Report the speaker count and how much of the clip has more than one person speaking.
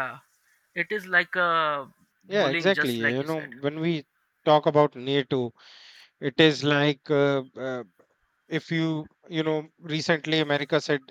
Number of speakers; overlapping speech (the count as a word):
two, about 10%